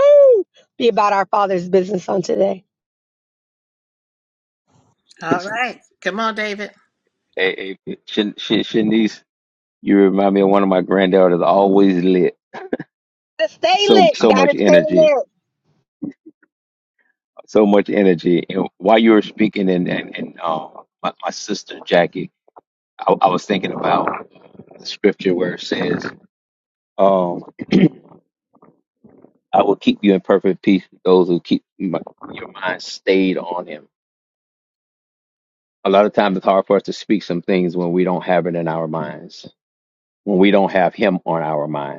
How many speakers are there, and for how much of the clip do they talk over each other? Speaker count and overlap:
3, about 3%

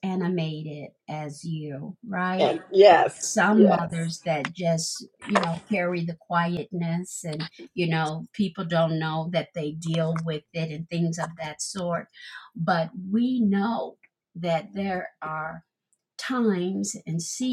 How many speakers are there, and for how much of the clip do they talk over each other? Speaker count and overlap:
2, about 3%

